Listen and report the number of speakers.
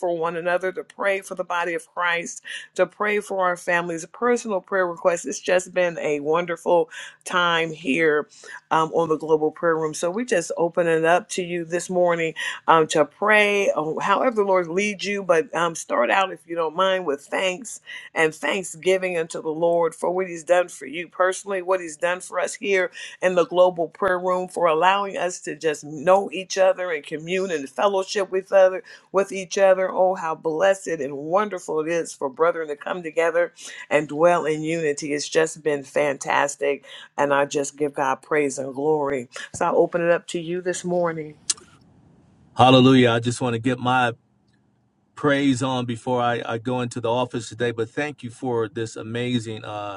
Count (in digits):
2